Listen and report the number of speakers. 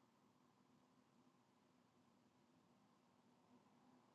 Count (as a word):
zero